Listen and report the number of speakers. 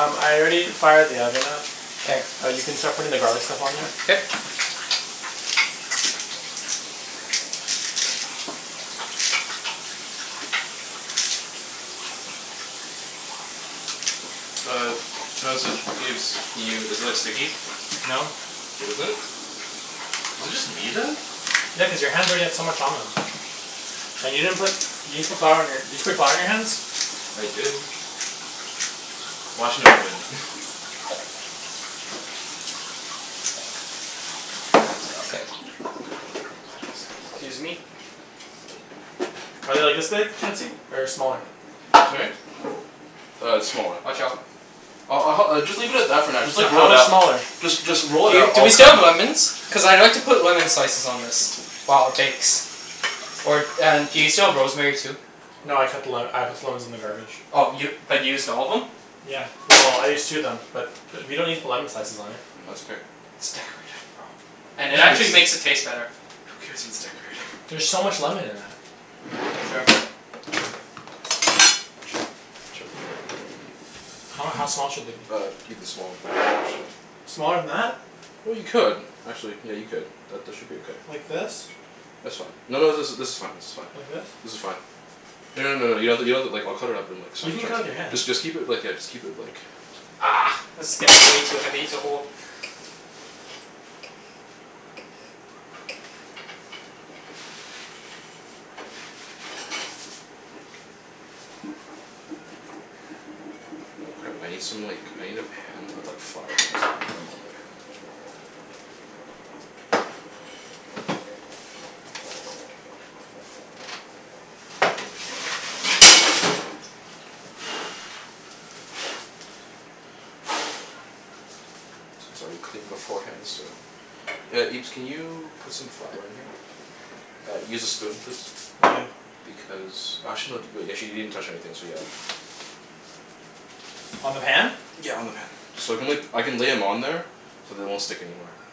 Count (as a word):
three